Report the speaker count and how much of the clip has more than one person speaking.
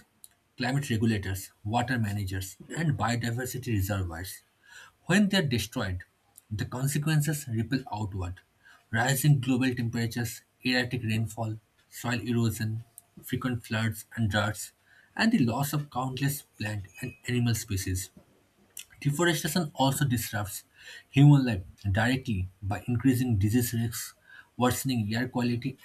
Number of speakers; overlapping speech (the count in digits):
1, no overlap